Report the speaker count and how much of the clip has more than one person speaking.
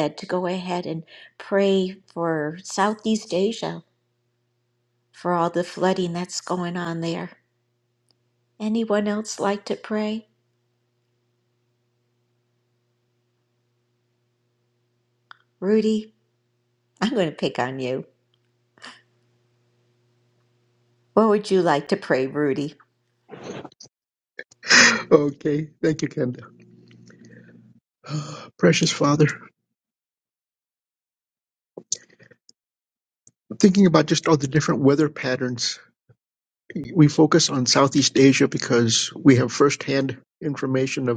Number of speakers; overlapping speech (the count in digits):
2, no overlap